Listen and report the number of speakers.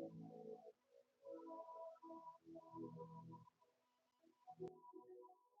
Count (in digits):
0